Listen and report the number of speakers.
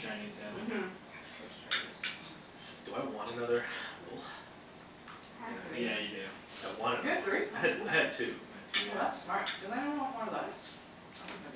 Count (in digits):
4